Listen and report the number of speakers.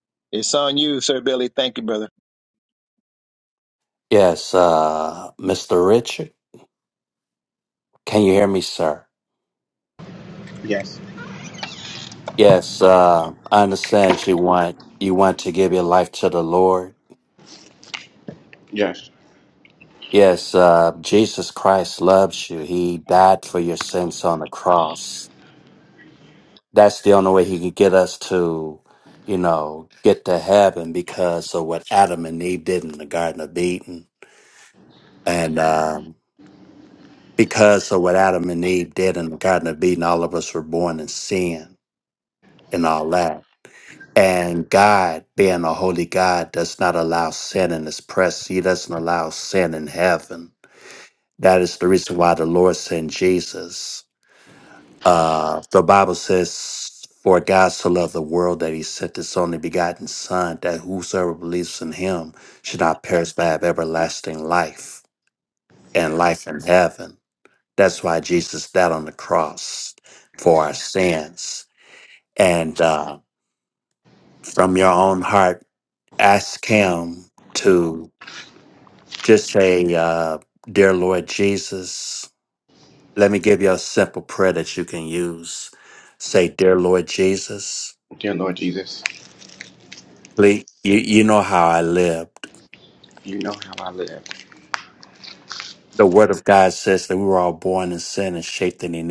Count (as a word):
three